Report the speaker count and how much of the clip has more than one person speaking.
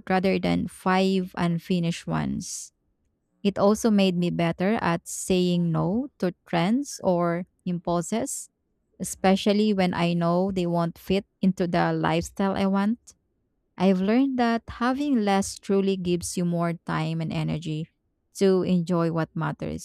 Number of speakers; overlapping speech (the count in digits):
1, no overlap